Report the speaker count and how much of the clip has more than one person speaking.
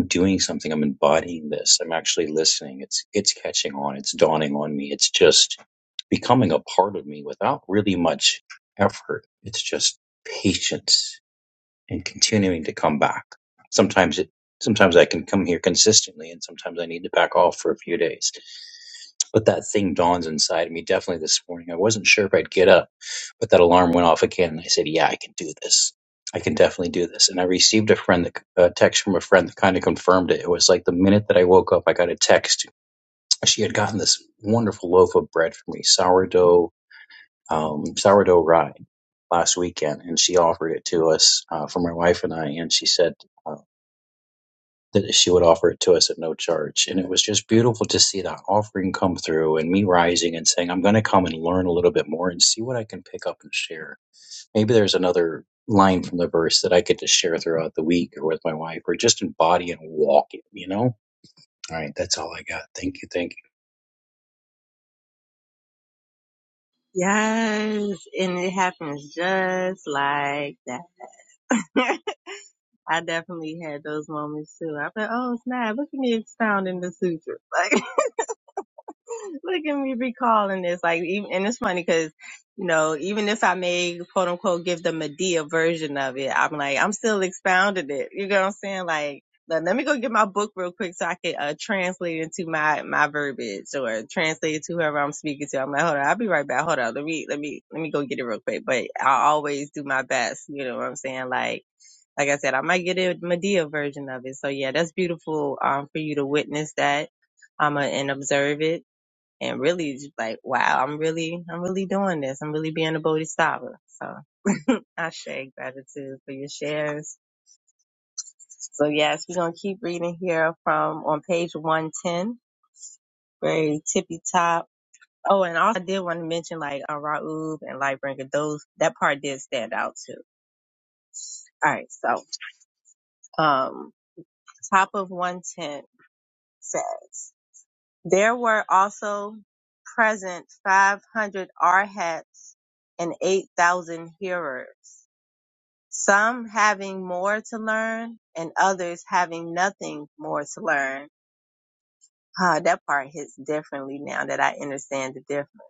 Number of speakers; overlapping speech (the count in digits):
2, no overlap